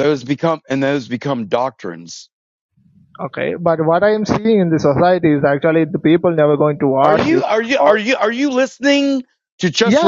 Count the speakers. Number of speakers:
2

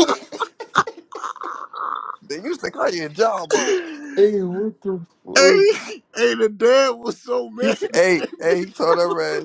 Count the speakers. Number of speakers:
3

